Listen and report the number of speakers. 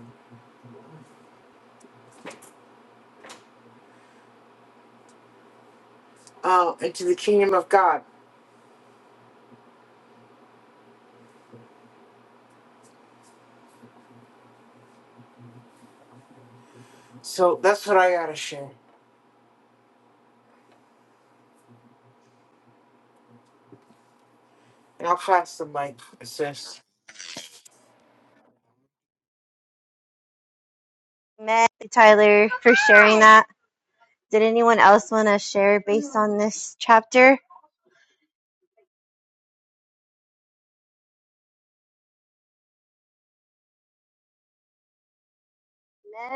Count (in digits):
2